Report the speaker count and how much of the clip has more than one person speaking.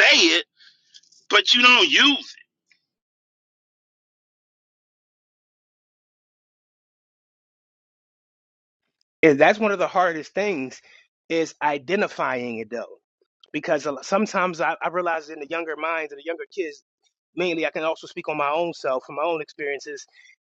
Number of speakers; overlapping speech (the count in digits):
2, no overlap